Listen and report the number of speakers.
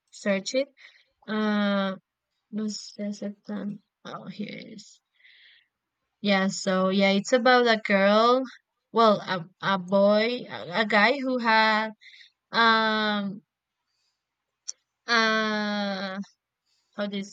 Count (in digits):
1